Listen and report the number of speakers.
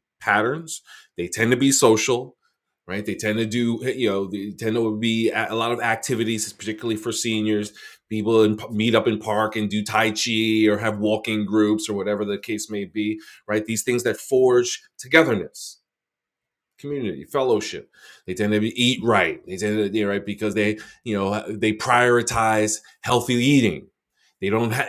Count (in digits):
1